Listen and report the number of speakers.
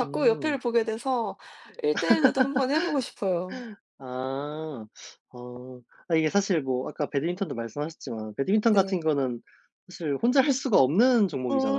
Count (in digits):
2